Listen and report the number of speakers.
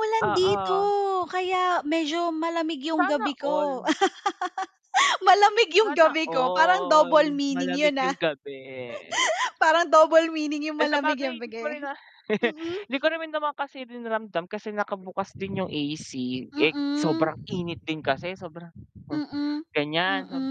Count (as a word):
two